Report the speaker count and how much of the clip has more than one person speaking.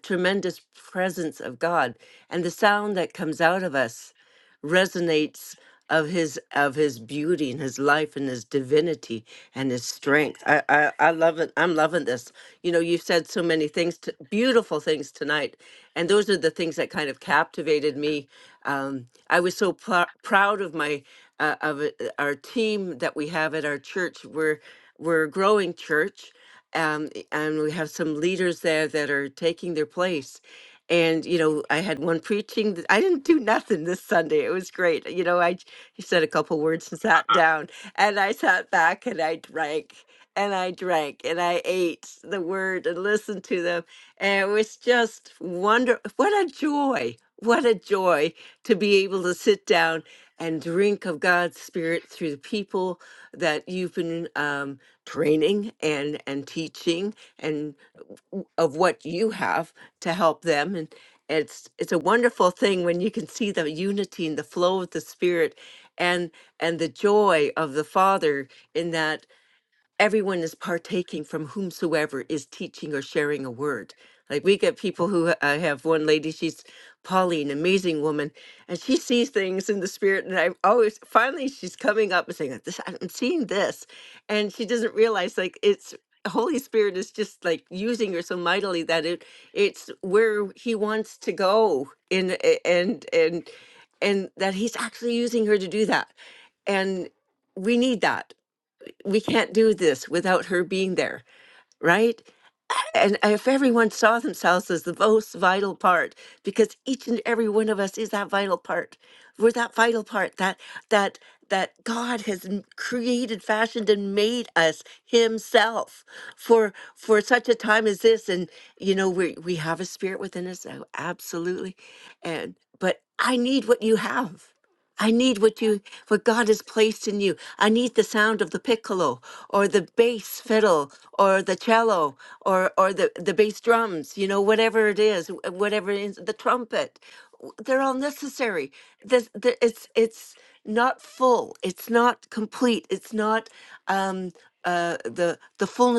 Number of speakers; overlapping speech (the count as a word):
one, no overlap